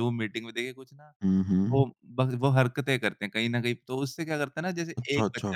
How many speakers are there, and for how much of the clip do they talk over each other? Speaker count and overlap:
2, about 13%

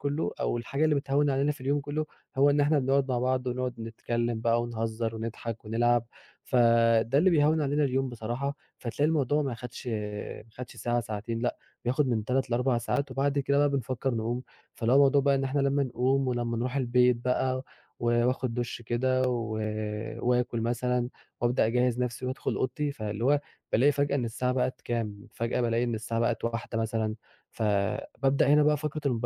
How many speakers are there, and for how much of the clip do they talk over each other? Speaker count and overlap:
1, no overlap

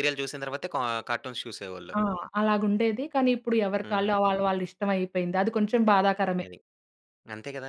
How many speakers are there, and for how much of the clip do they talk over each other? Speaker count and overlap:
2, about 6%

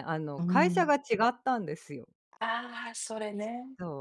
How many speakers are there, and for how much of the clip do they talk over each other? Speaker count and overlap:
2, about 11%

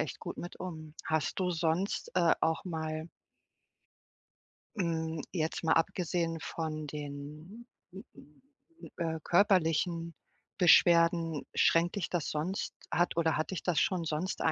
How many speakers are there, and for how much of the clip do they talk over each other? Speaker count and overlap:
1, no overlap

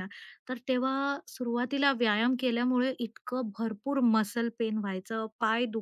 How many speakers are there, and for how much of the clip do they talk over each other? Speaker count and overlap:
1, no overlap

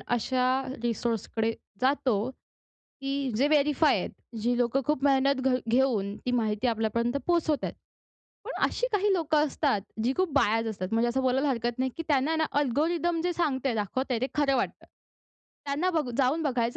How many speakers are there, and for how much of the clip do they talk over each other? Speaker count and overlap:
1, no overlap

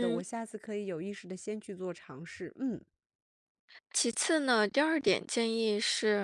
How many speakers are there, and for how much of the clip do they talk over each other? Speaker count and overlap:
2, about 4%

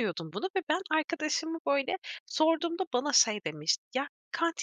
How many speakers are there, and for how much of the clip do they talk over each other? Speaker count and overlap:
1, no overlap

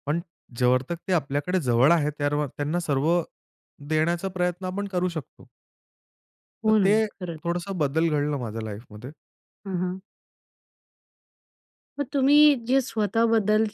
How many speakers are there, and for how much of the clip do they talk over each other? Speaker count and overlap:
2, about 2%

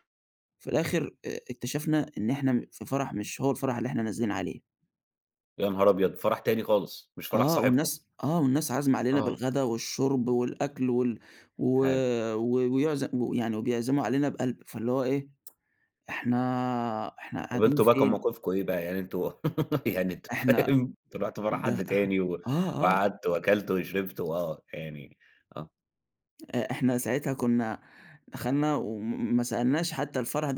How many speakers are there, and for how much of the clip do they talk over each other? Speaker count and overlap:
2, about 8%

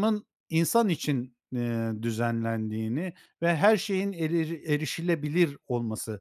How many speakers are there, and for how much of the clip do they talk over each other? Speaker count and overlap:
1, no overlap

